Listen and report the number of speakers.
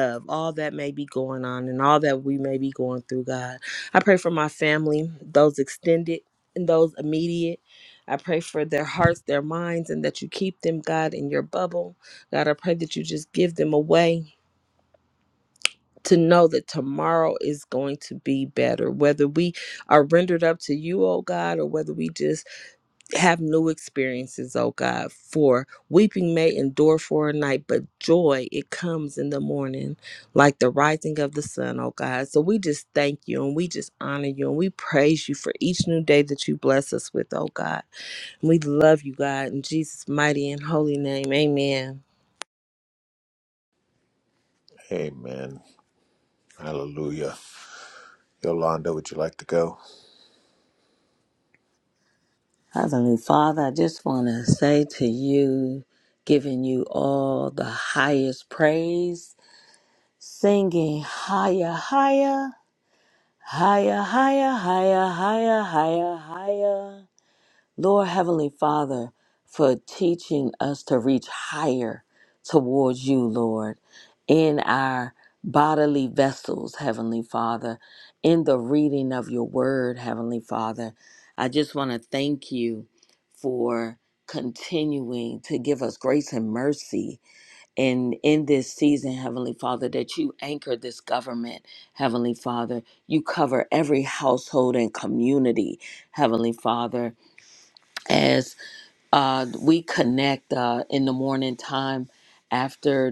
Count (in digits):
3